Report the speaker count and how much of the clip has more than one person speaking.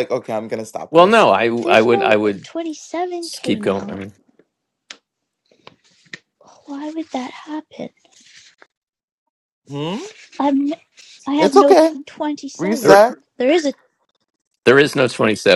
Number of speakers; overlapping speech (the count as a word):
three, about 16%